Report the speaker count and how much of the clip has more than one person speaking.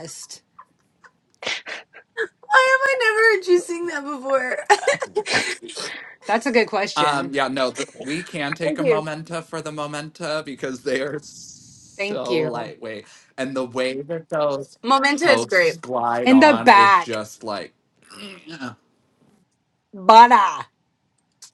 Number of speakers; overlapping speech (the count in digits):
3, about 12%